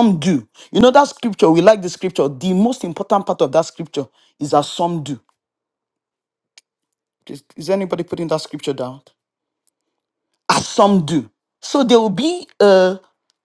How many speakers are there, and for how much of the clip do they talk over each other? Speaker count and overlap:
one, no overlap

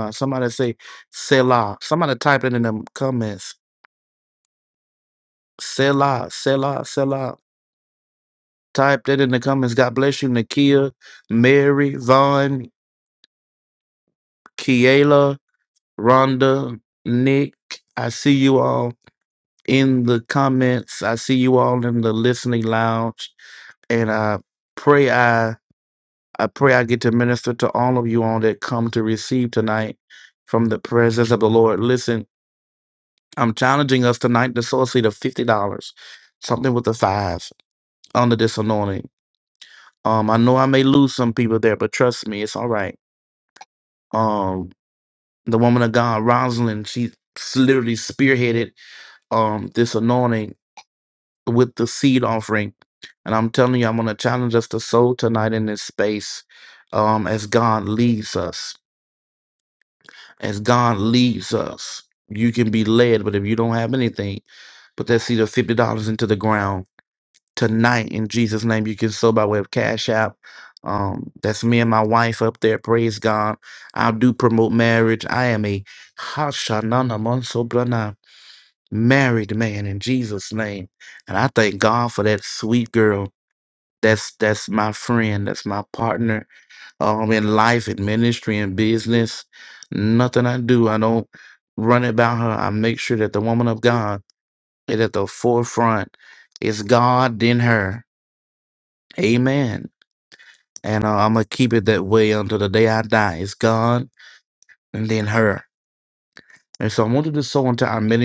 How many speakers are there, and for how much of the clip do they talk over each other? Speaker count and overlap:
one, no overlap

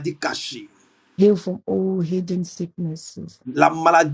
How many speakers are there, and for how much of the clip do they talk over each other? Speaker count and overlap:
two, no overlap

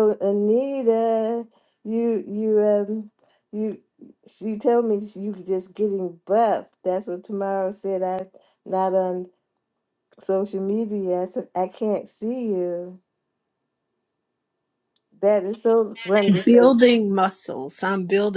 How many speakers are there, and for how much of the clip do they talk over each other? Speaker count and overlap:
two, about 2%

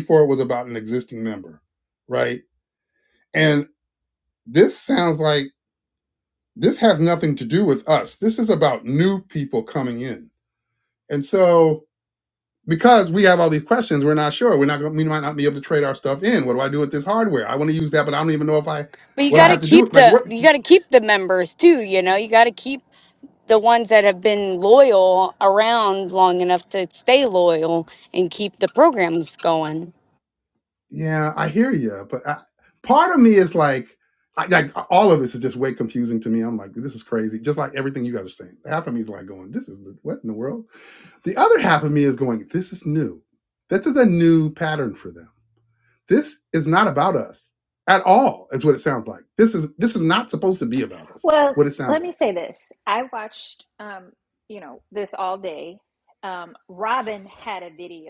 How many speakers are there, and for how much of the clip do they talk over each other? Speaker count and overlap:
three, about 3%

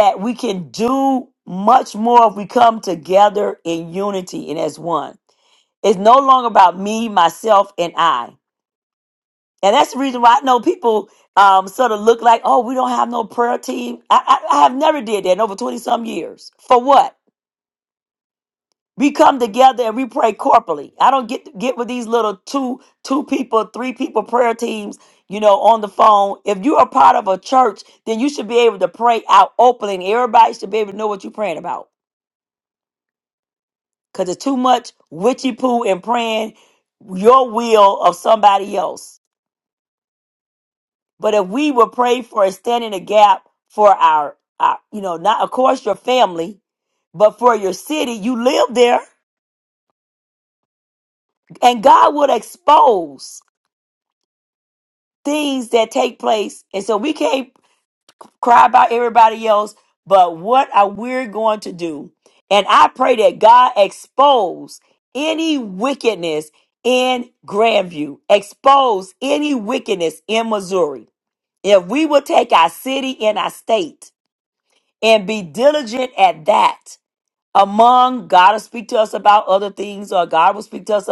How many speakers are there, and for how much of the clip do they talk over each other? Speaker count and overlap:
one, no overlap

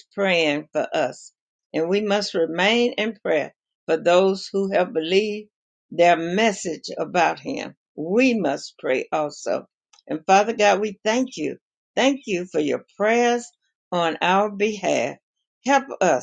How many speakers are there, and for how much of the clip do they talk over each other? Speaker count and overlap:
one, no overlap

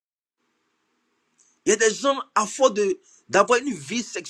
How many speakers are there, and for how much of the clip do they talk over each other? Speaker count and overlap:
one, no overlap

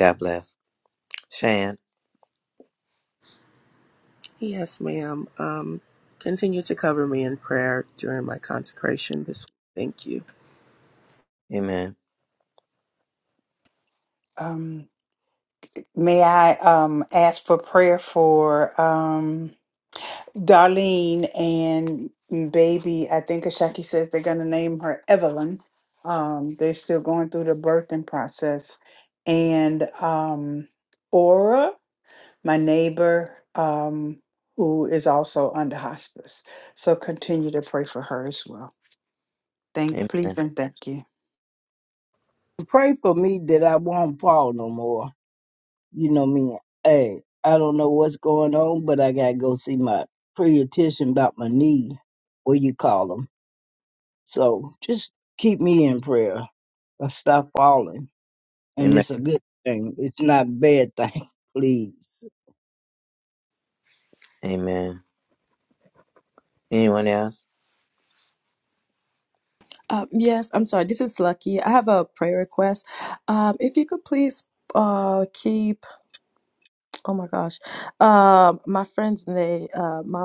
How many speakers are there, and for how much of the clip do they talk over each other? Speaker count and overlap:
five, about 1%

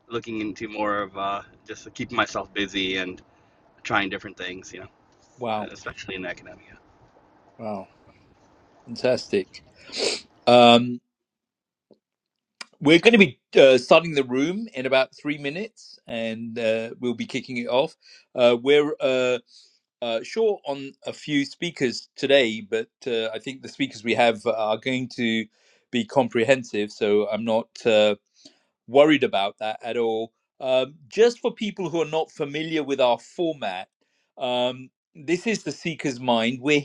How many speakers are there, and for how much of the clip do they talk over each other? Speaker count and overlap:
two, under 1%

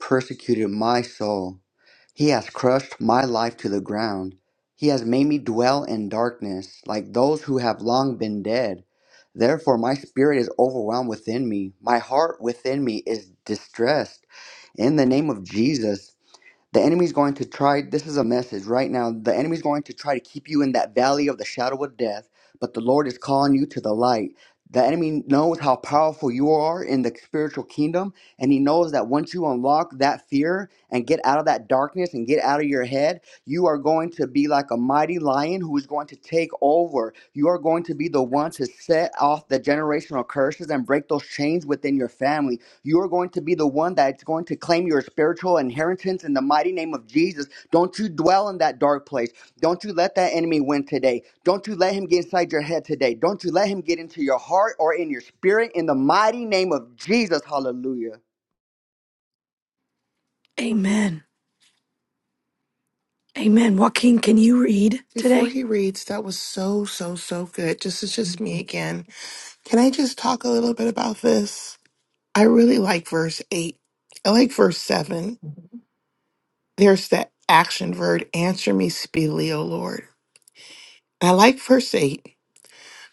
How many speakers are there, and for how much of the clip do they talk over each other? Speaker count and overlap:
three, under 1%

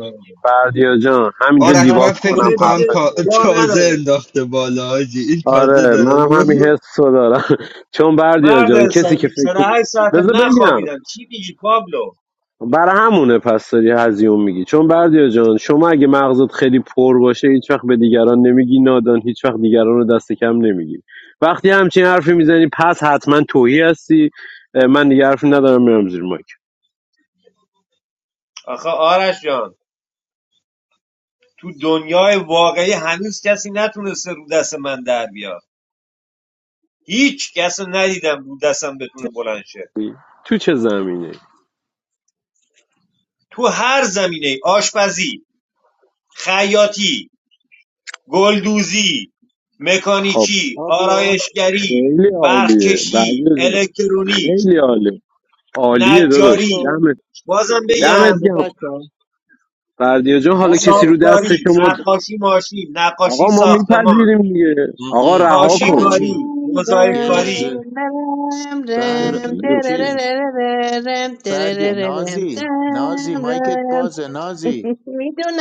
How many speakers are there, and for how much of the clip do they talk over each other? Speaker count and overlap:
five, about 25%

